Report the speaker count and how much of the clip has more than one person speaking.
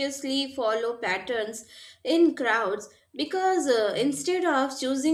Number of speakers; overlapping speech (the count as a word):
one, no overlap